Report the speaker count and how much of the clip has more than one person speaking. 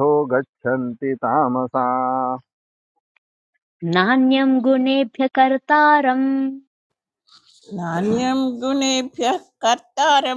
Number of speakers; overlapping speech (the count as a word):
three, no overlap